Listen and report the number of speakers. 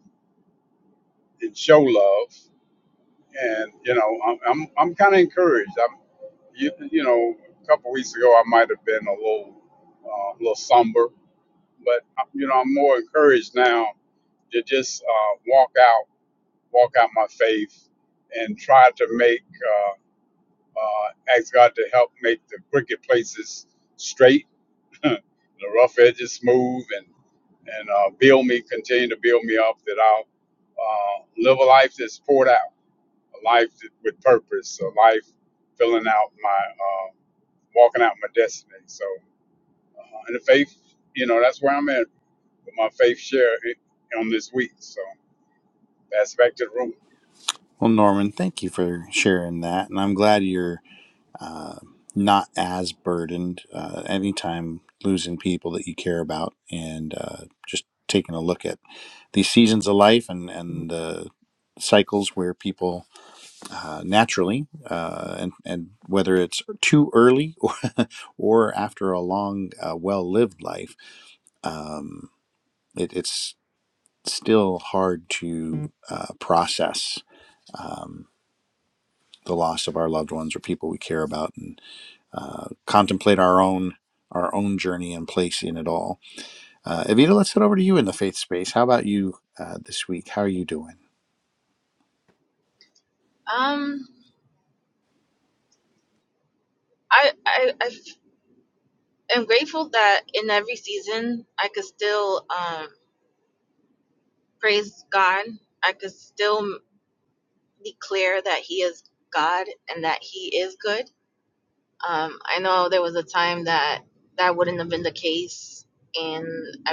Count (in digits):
3